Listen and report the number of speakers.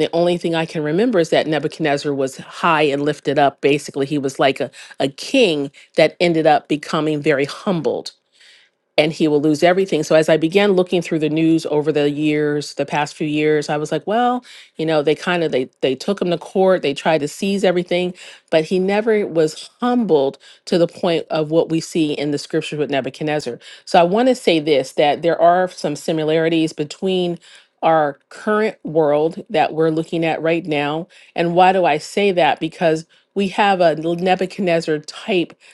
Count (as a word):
one